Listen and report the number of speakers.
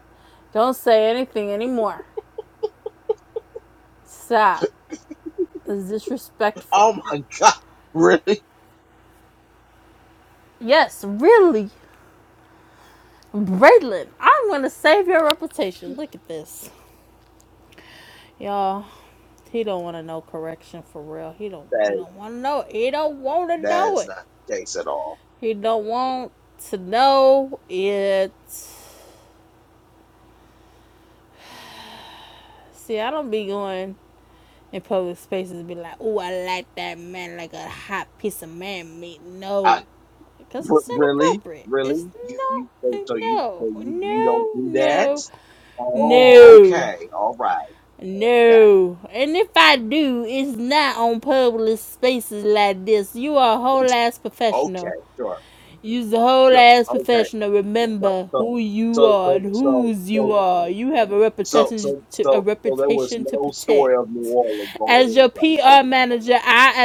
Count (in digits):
2